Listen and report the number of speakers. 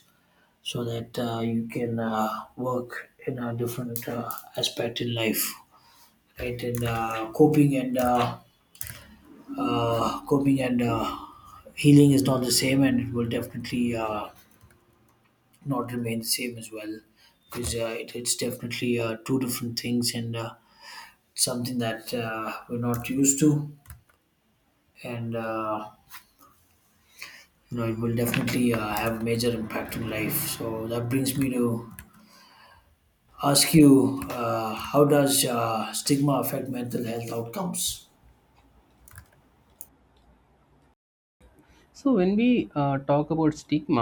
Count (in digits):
2